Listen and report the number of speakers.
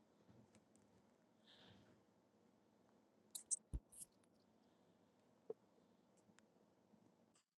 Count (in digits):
0